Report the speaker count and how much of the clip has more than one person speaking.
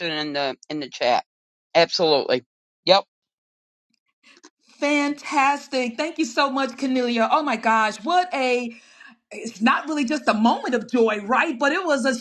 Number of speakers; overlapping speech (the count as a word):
two, no overlap